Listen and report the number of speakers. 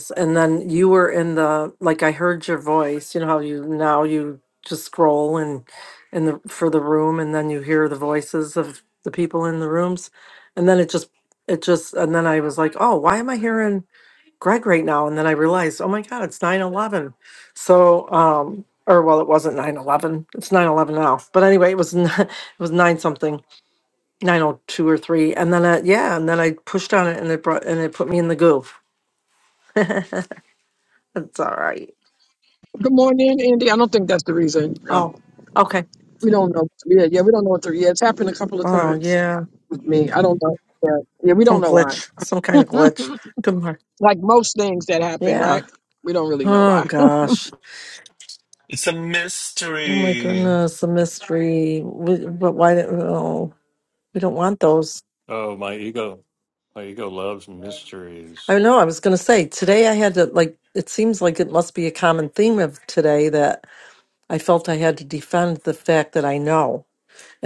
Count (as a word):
four